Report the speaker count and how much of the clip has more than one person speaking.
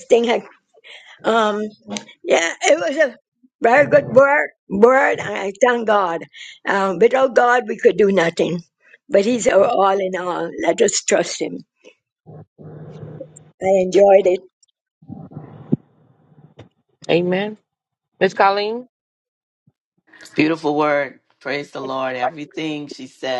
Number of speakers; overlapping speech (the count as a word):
three, no overlap